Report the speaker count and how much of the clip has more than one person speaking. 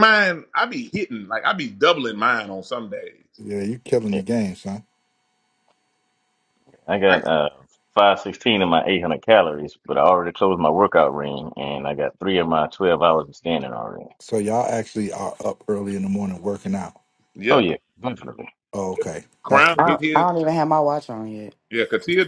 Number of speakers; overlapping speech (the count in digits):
4, about 6%